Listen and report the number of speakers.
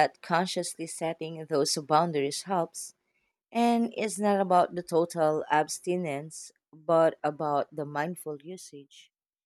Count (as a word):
one